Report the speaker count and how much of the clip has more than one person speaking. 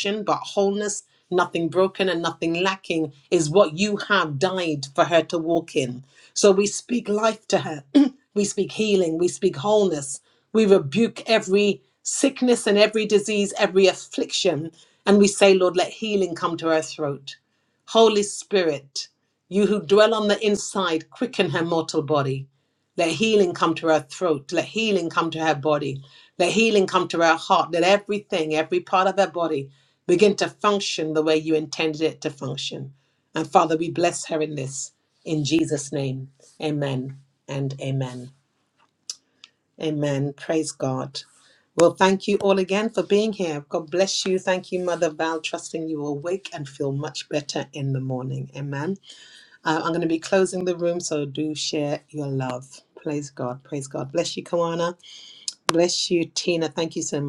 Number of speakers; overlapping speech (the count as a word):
one, no overlap